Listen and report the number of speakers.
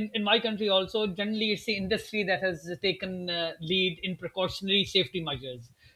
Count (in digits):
1